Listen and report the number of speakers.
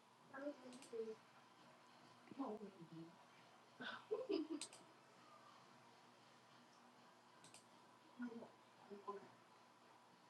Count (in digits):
0